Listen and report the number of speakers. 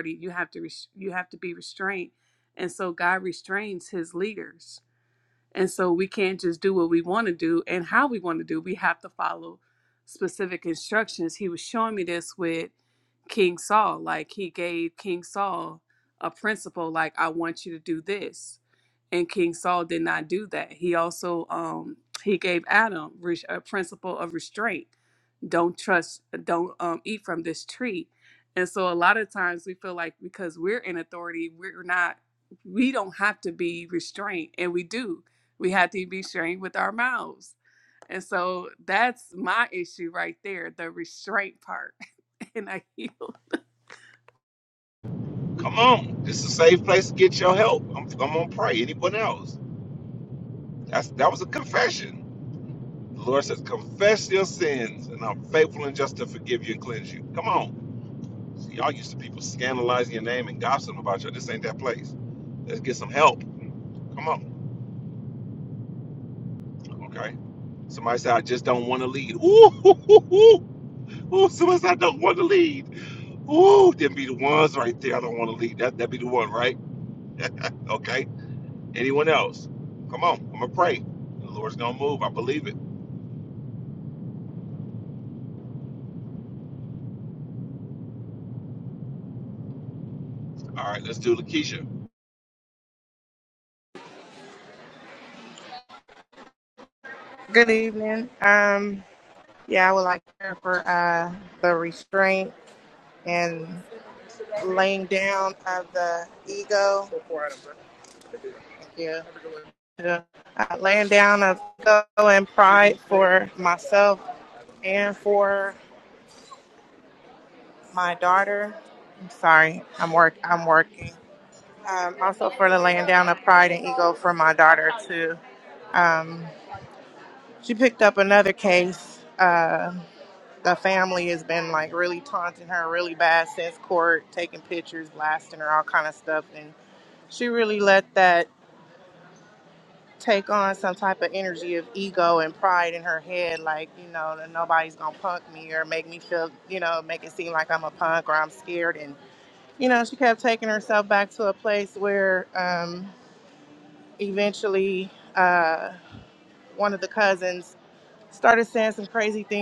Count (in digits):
3